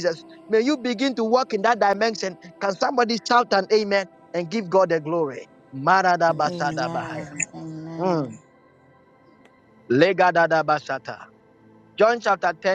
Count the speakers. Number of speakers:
2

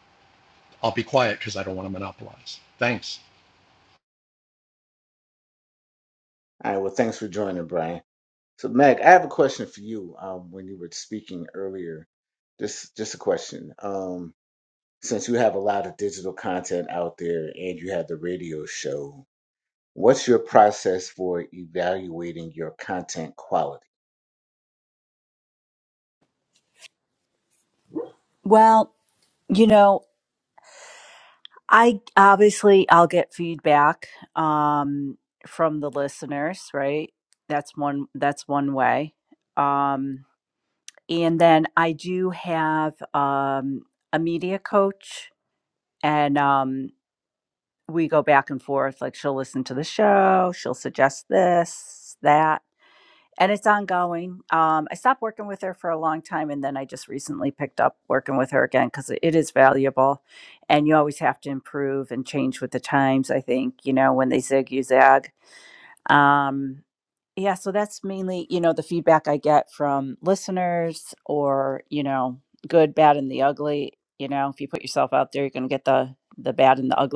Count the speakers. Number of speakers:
3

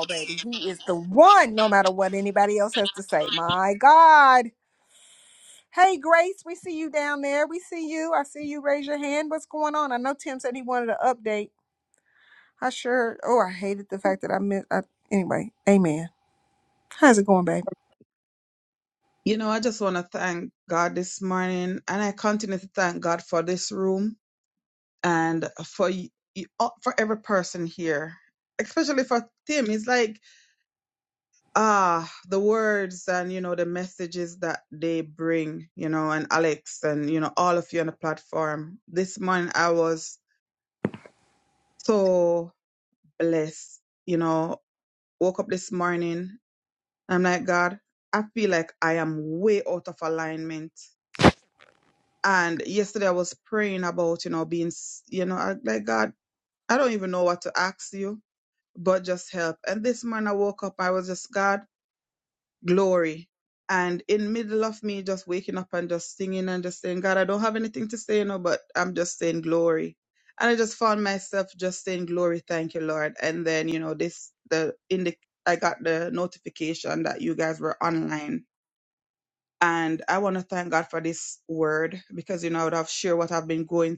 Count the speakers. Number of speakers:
2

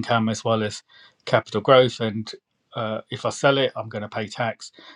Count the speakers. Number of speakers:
1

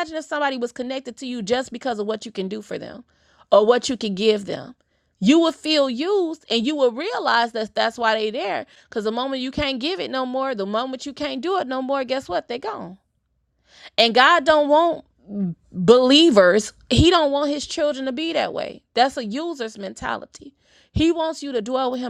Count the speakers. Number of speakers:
1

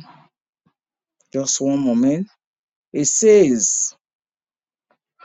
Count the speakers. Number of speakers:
1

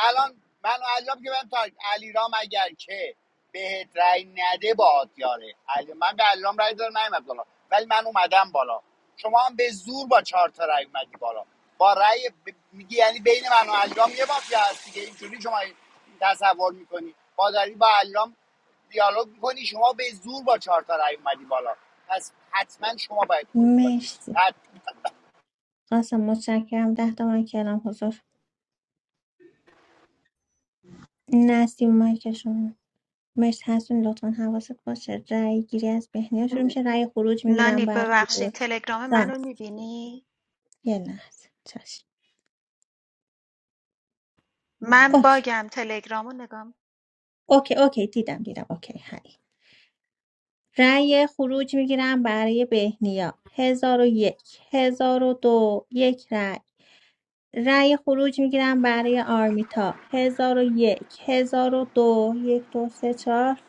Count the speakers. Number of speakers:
3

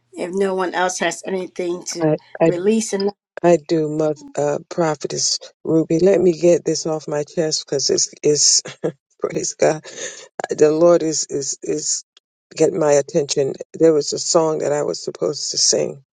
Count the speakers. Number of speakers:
2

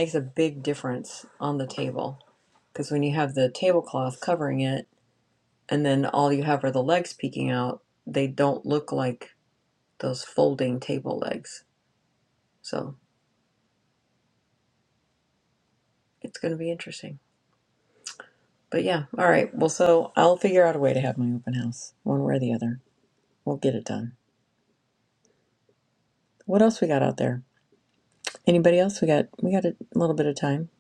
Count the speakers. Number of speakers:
1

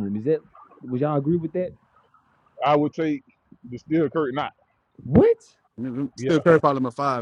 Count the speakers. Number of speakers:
3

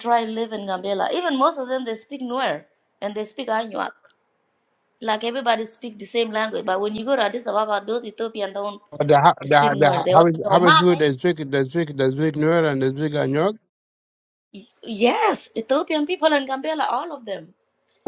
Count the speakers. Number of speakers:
2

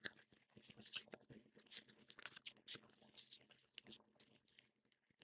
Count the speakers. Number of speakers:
0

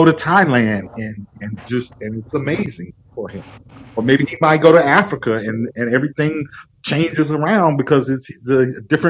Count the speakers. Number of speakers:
1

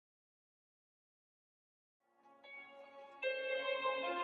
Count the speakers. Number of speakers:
0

